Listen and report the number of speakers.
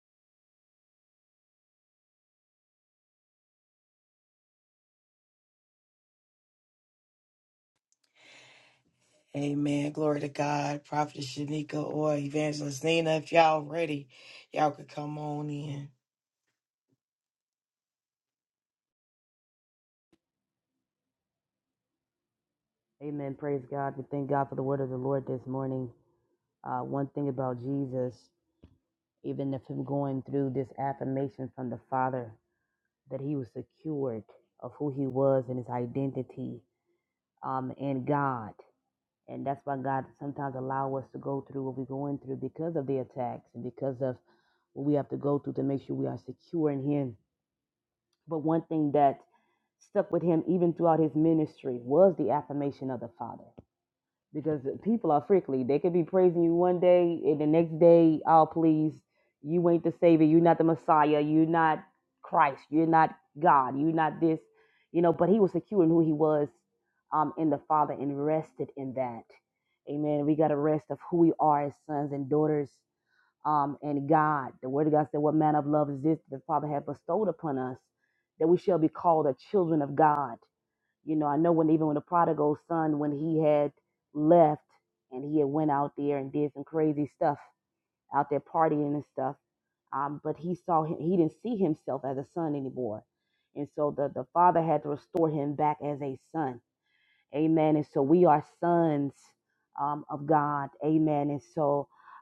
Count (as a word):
two